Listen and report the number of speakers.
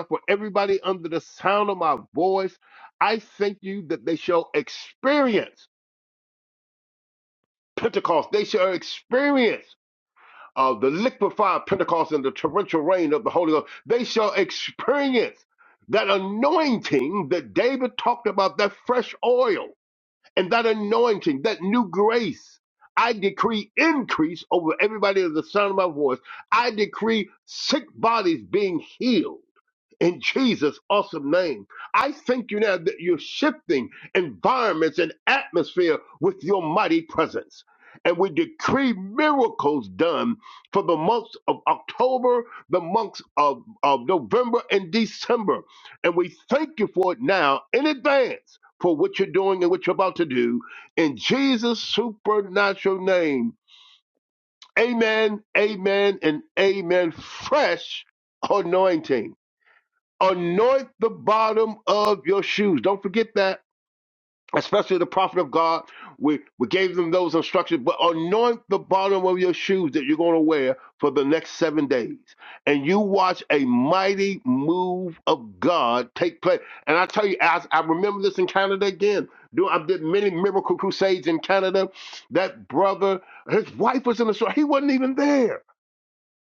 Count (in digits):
1